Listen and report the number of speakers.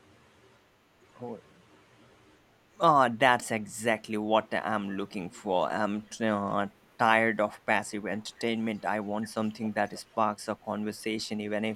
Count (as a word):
one